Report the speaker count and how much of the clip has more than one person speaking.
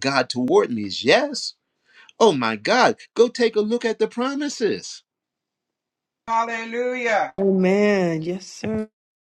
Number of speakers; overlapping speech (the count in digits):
3, no overlap